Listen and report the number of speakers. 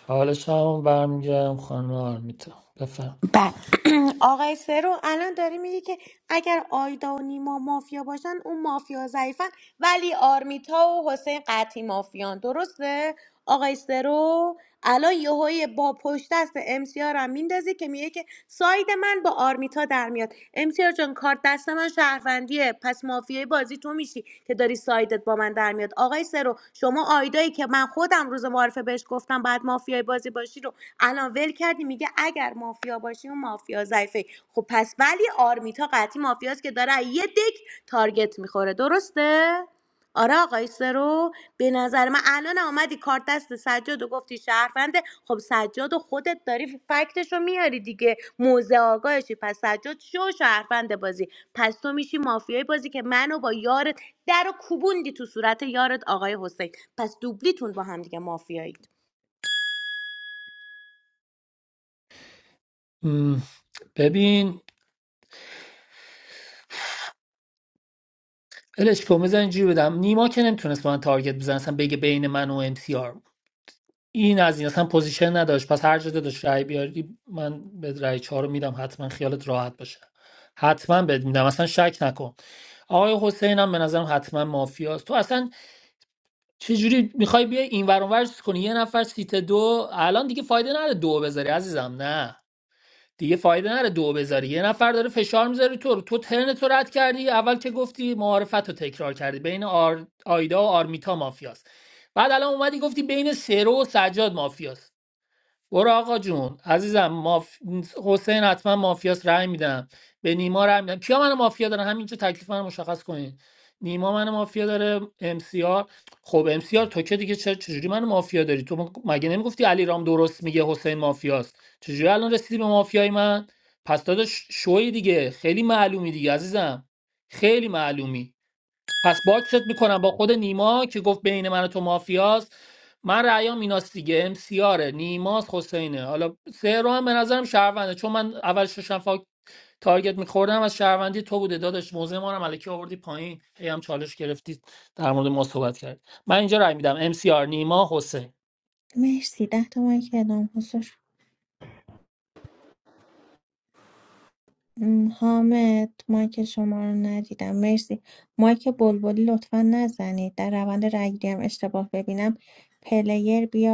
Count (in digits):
3